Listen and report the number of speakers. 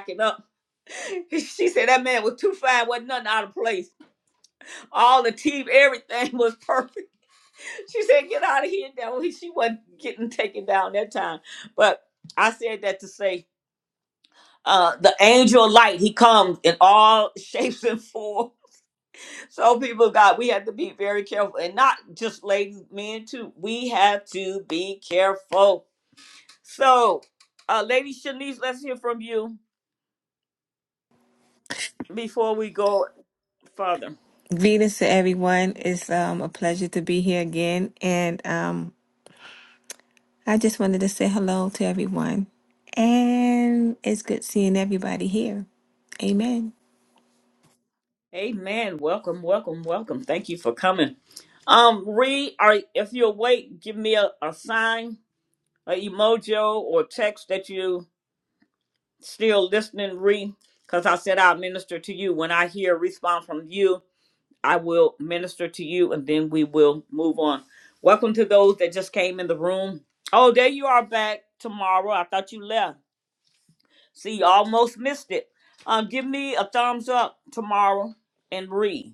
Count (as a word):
two